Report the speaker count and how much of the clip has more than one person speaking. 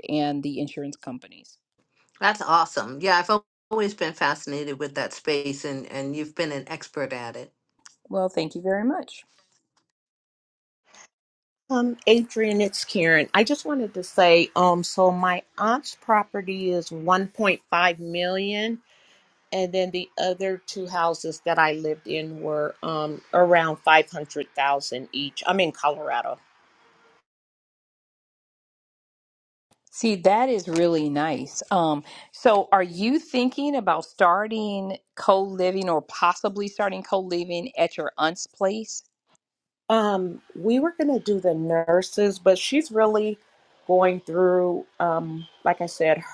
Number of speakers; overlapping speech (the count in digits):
3, no overlap